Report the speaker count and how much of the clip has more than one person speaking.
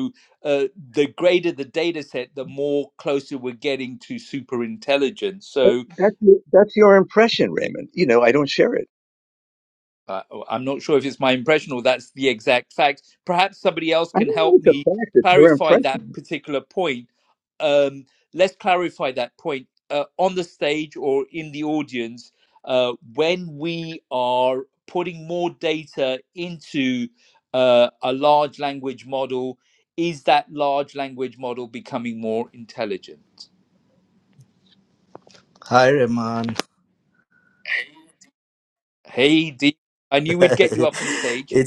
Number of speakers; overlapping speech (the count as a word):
three, about 4%